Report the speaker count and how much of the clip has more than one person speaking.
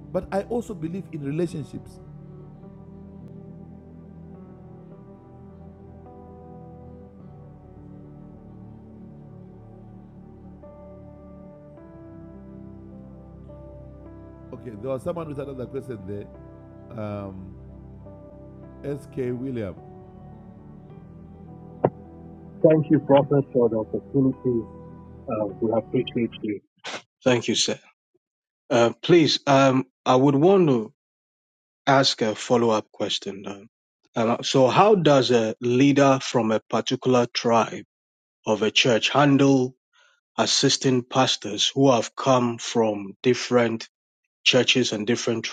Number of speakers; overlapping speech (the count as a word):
two, no overlap